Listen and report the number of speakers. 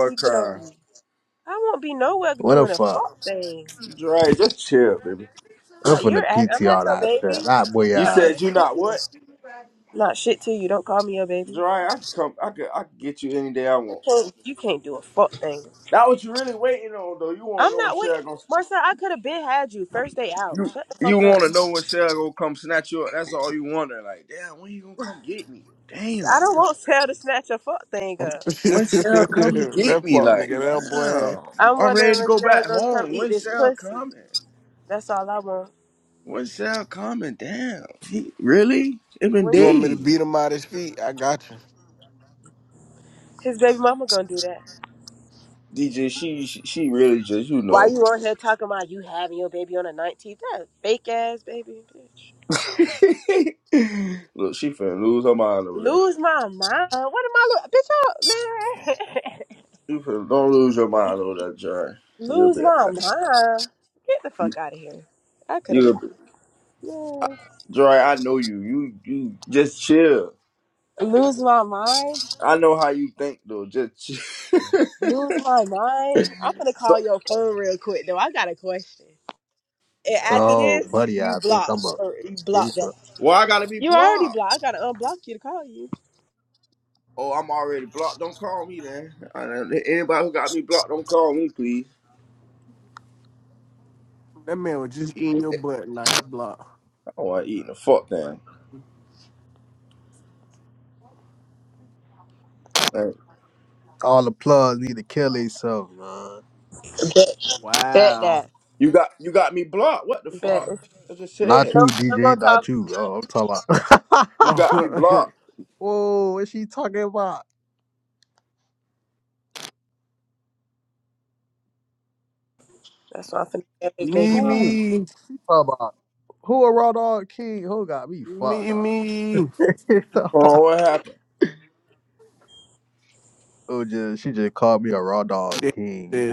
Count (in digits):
4